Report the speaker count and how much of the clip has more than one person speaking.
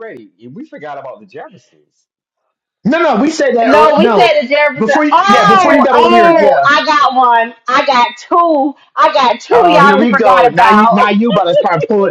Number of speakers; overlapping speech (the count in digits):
3, about 34%